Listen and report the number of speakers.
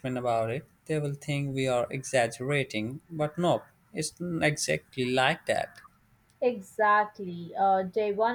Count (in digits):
2